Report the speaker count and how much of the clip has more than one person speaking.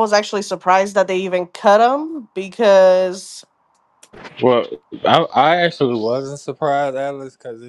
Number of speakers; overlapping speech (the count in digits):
2, no overlap